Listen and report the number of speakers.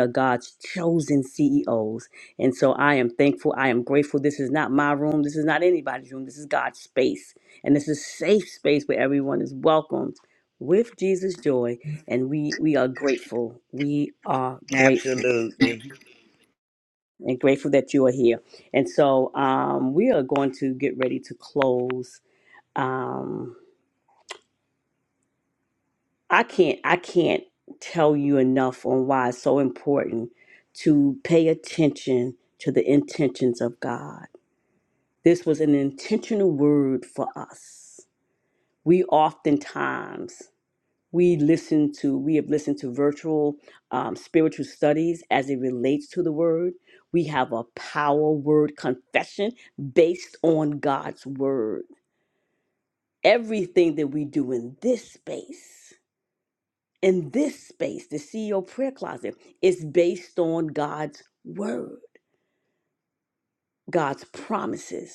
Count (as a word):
two